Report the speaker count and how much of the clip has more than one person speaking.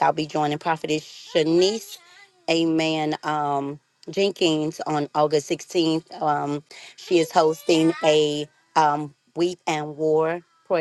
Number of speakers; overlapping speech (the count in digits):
1, no overlap